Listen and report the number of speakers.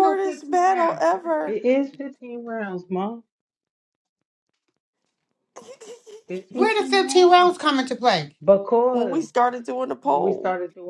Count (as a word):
three